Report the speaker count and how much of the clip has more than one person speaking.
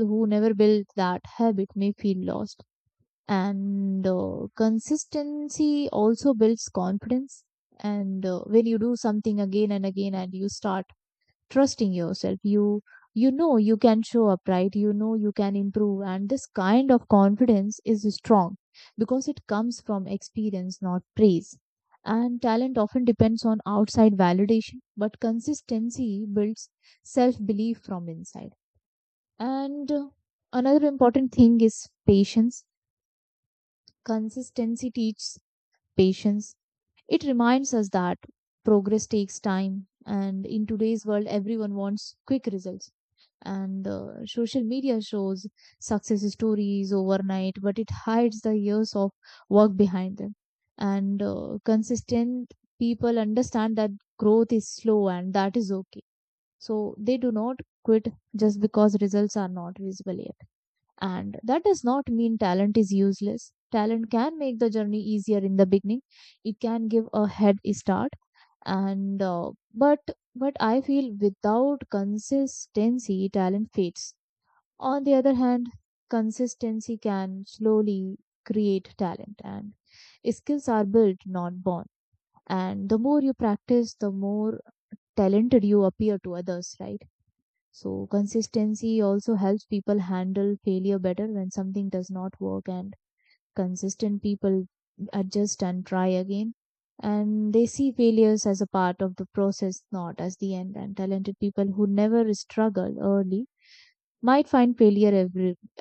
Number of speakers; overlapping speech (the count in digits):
1, no overlap